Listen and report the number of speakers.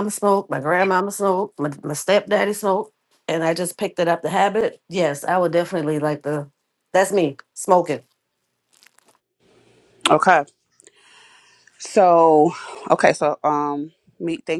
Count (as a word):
two